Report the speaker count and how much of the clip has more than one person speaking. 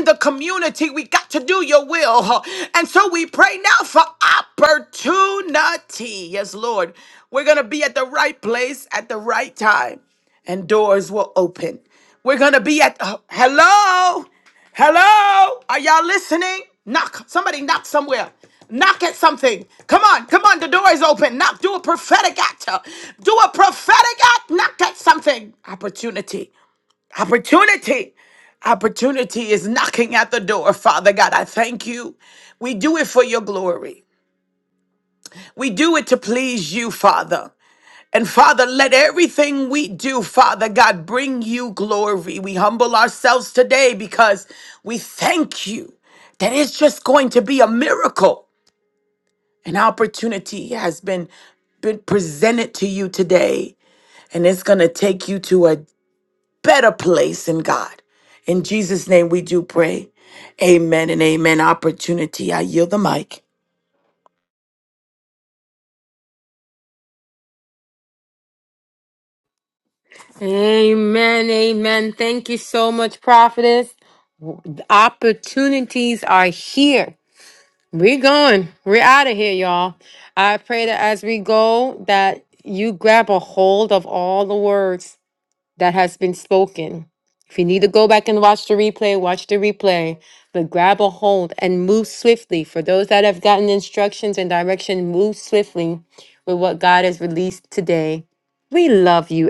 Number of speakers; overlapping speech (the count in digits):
2, no overlap